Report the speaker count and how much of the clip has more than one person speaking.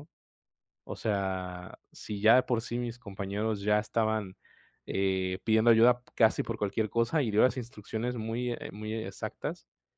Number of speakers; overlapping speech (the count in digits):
1, no overlap